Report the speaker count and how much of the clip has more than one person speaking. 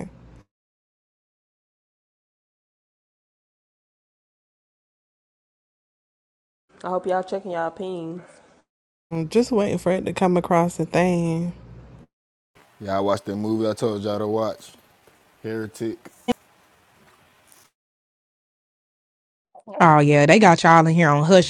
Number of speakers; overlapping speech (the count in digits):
4, no overlap